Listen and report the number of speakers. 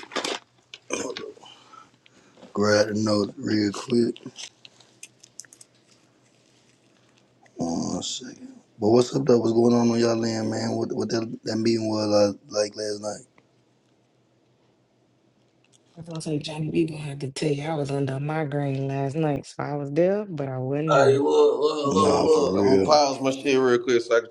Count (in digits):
3